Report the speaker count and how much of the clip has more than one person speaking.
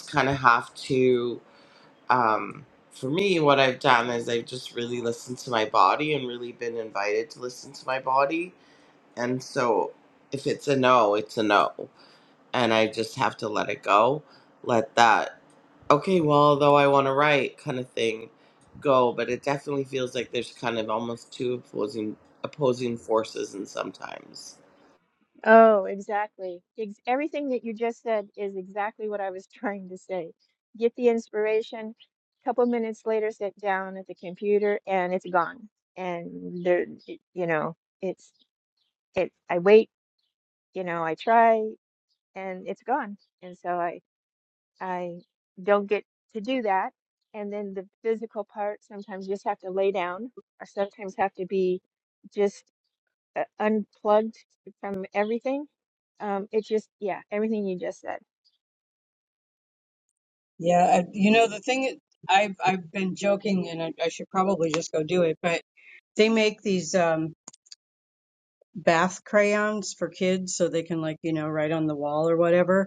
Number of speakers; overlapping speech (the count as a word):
three, no overlap